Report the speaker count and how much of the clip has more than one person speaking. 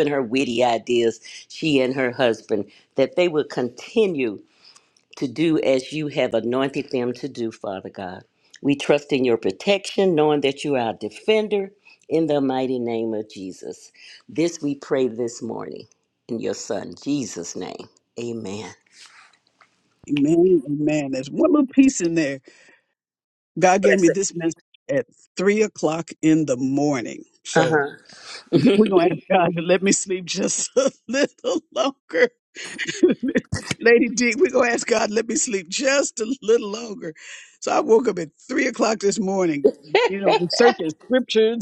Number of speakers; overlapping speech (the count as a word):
two, about 1%